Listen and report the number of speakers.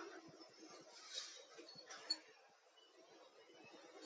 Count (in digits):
0